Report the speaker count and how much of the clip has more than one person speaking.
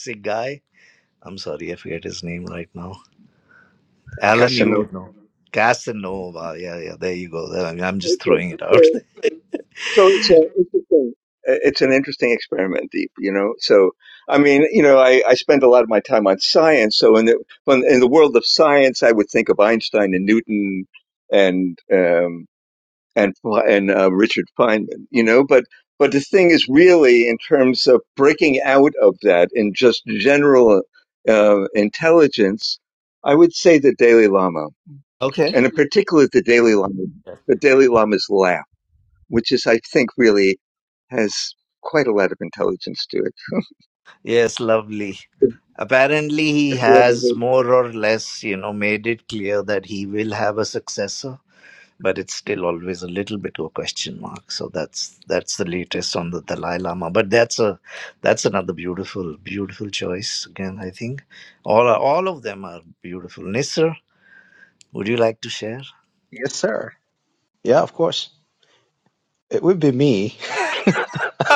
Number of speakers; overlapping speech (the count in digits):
3, about 3%